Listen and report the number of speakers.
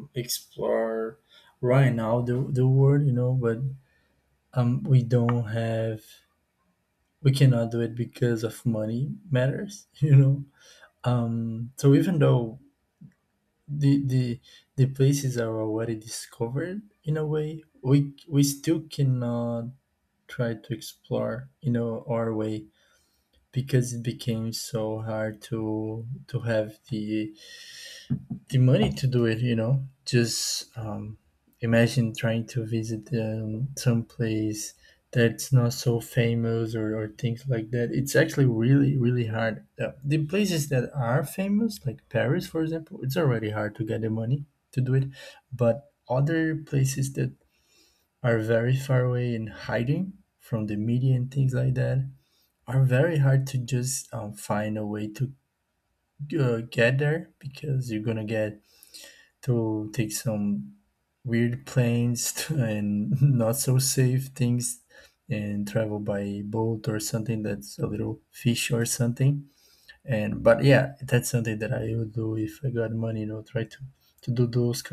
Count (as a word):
one